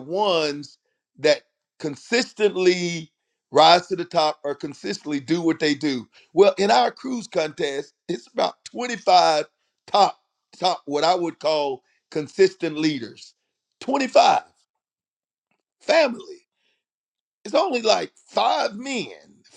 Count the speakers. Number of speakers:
one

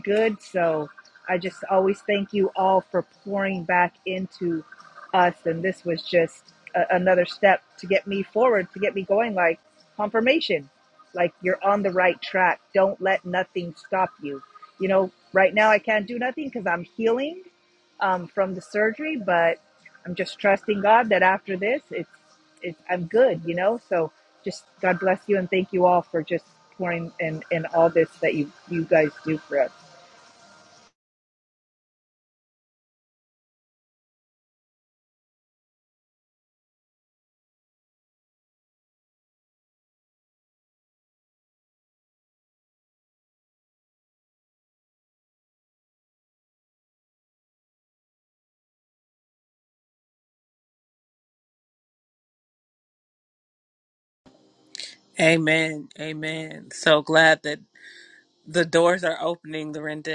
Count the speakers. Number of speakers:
two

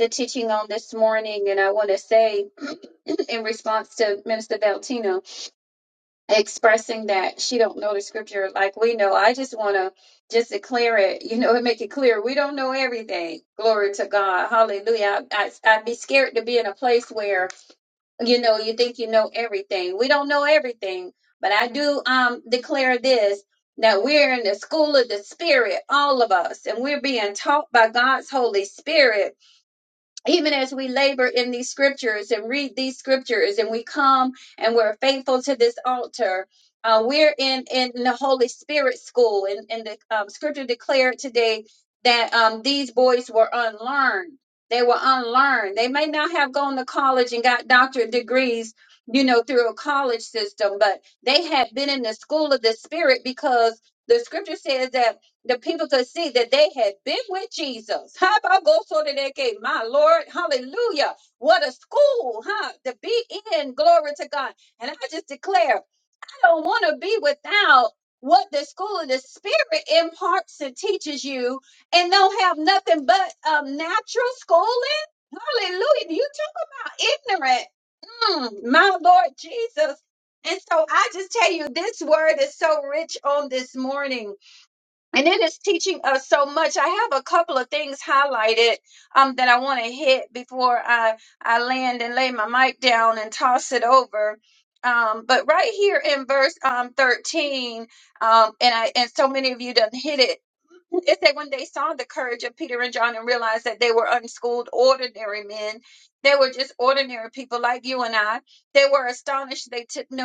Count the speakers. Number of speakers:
one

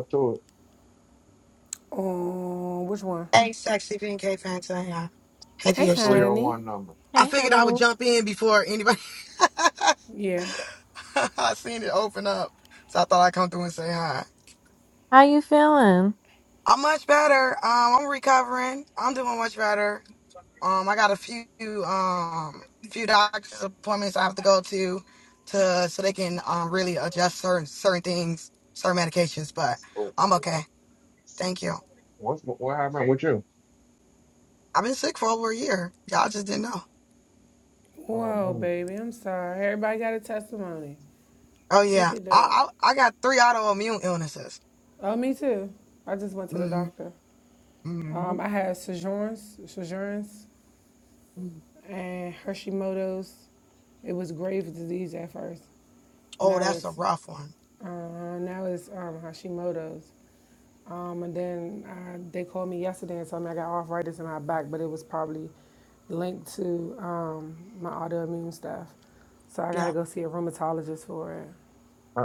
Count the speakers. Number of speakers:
four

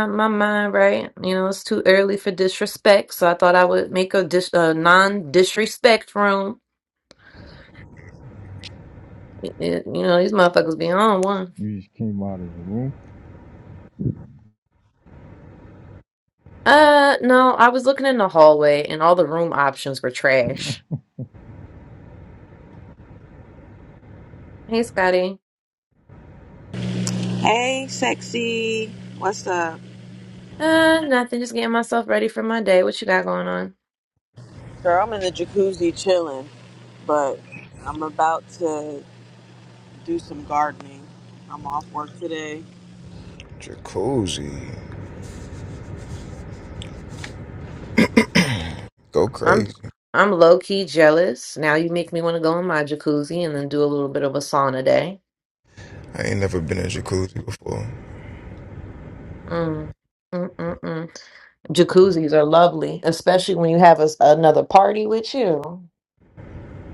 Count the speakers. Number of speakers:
four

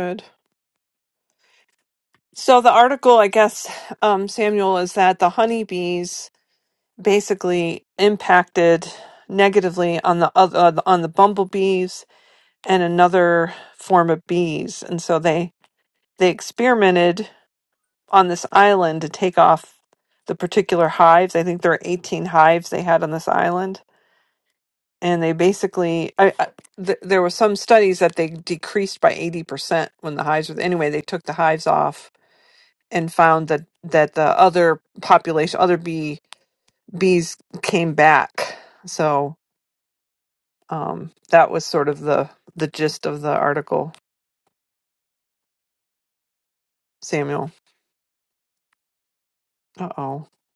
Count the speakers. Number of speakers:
one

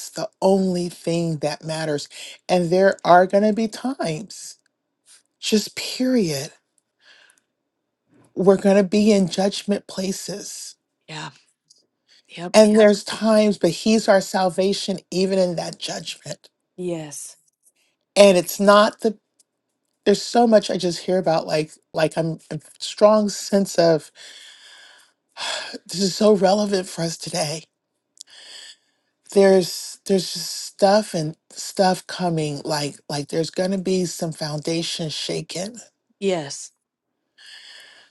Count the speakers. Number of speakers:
two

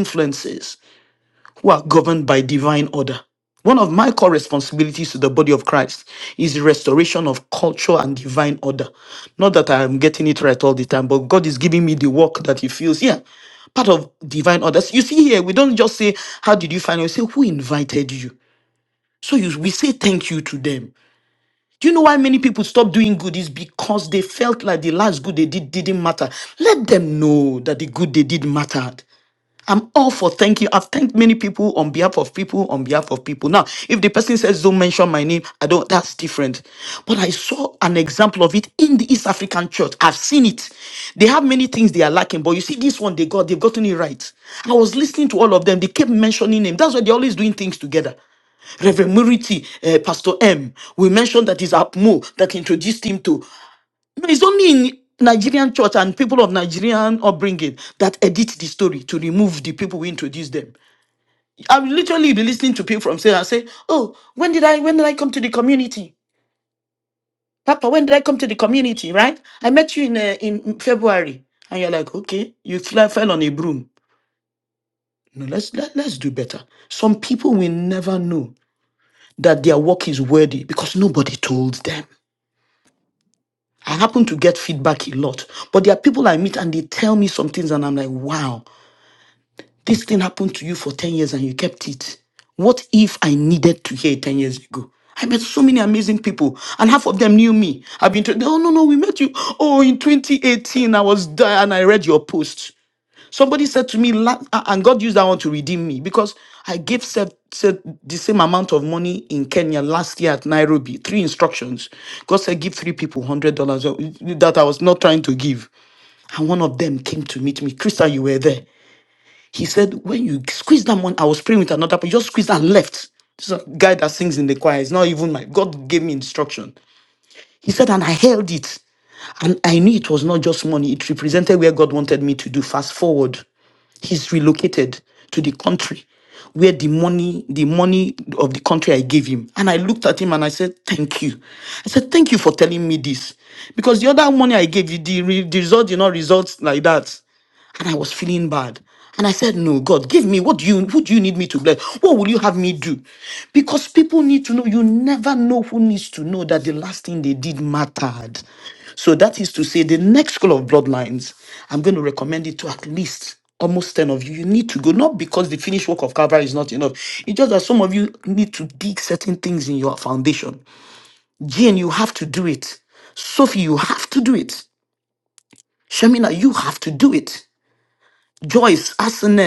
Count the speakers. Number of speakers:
one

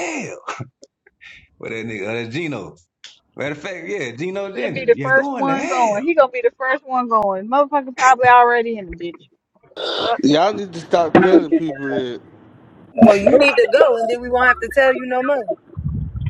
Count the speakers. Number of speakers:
four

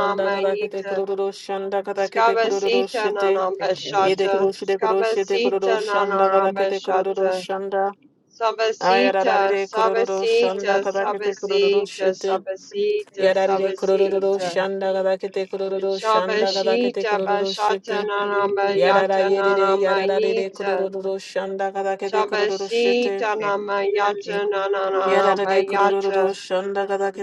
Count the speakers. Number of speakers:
two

